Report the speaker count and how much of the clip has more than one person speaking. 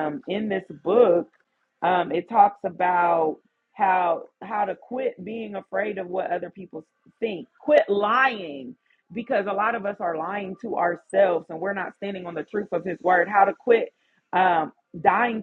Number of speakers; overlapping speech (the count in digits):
1, no overlap